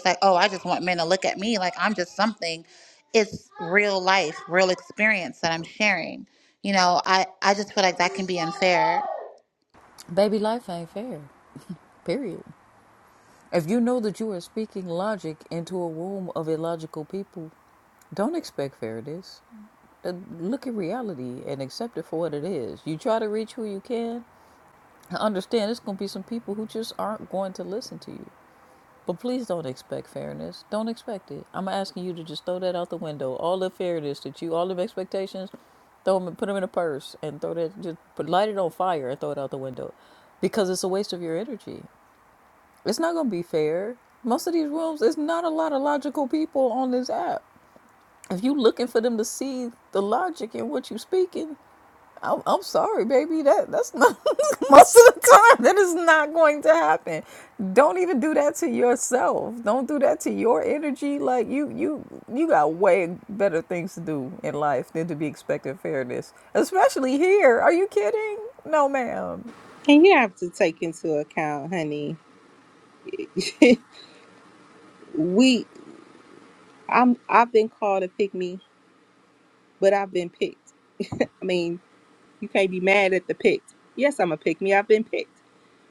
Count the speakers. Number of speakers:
3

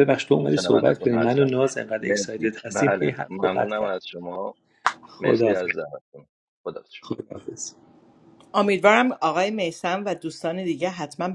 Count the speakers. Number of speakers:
3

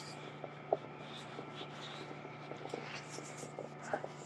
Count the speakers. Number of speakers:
0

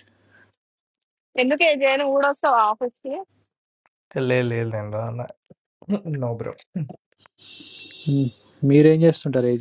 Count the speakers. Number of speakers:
3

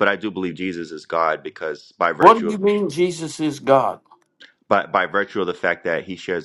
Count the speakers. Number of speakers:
2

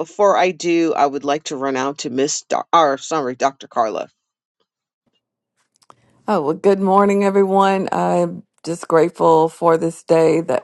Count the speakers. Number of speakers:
2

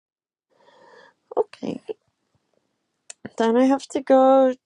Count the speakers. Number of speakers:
1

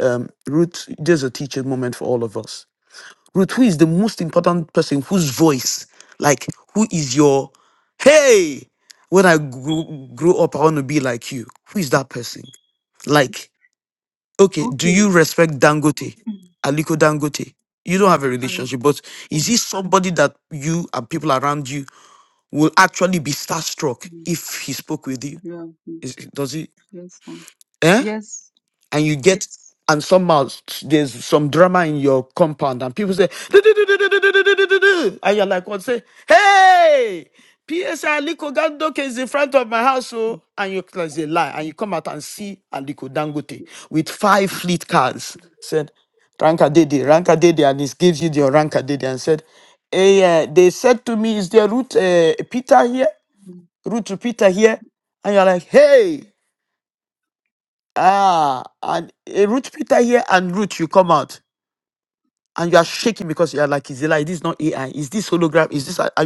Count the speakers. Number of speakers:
2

